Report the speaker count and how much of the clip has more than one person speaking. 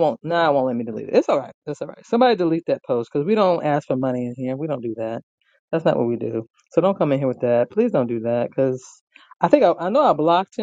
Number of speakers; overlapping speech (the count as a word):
one, no overlap